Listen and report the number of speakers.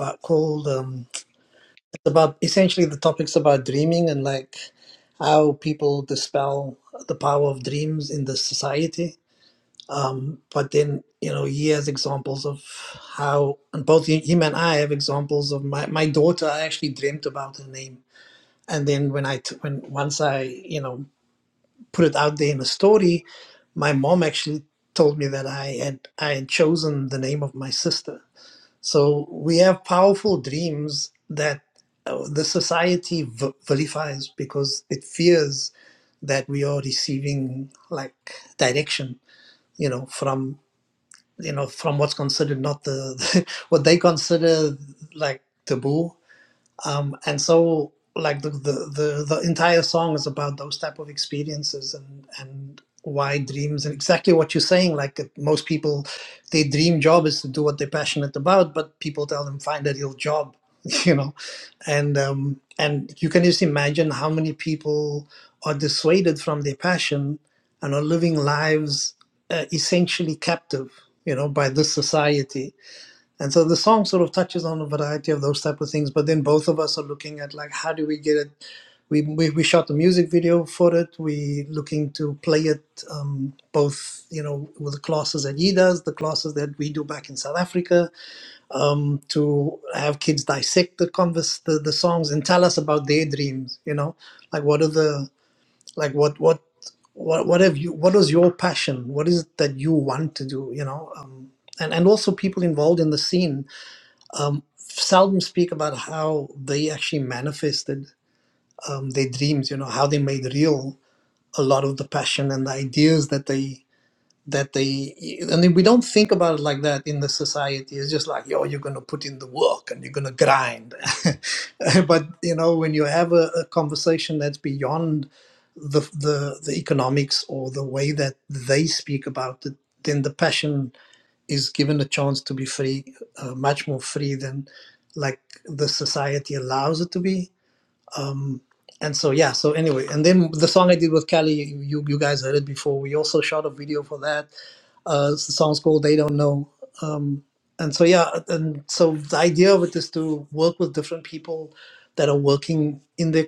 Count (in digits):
1